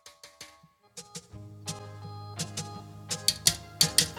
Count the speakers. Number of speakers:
zero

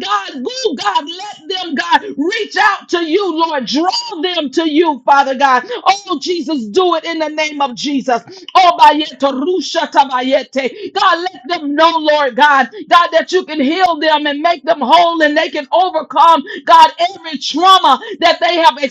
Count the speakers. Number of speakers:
one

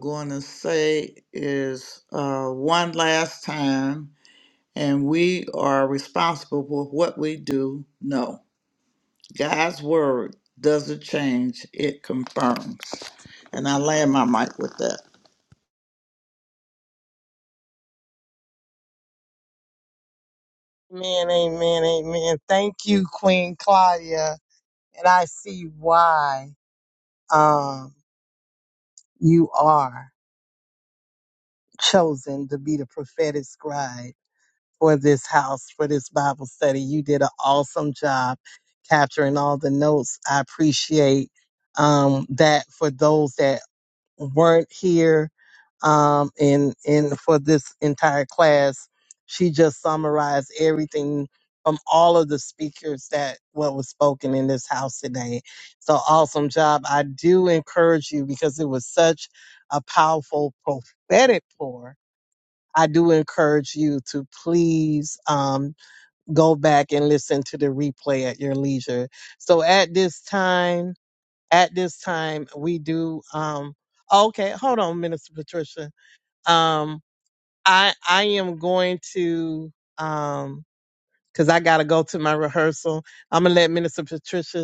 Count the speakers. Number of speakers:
two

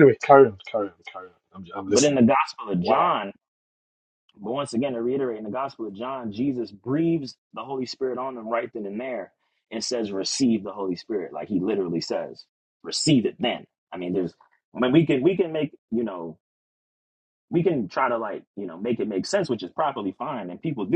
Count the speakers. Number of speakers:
two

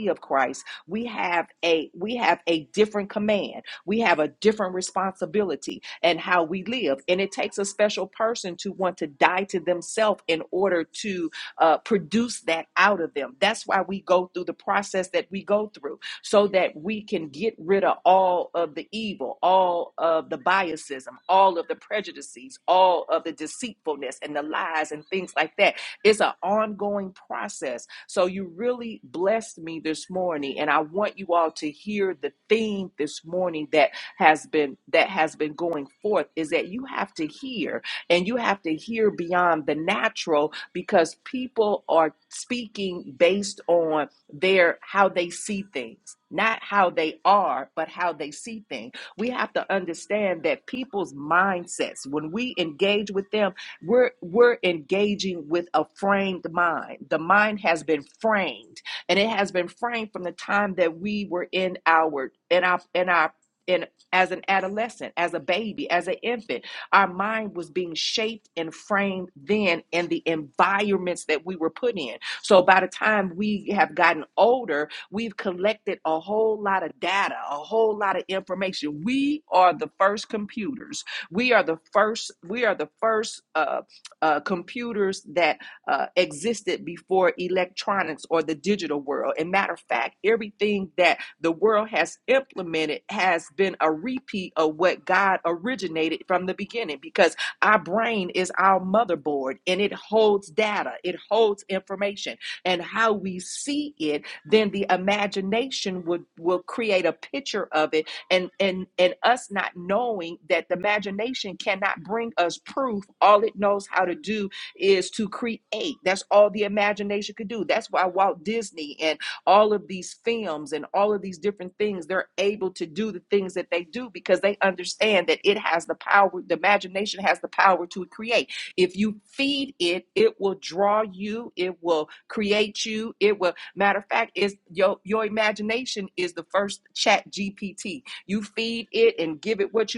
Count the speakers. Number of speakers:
one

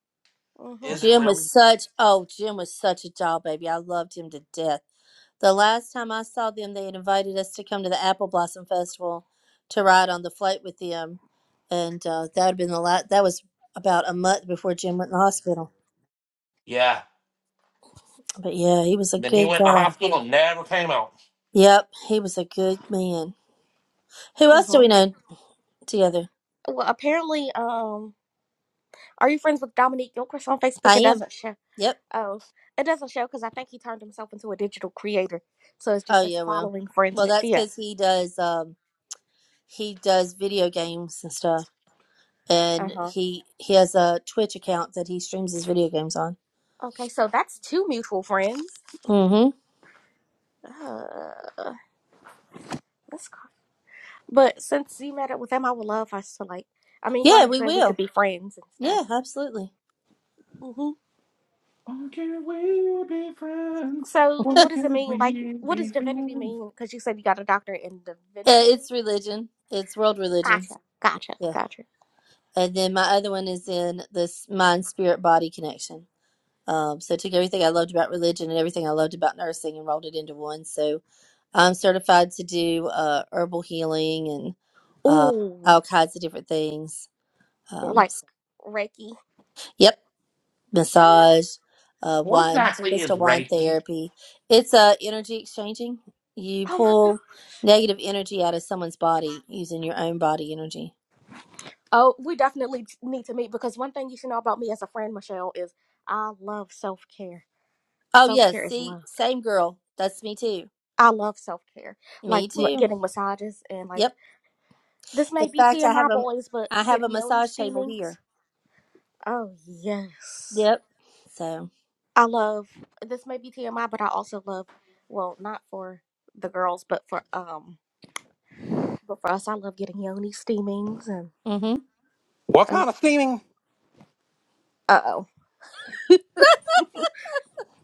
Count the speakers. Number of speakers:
three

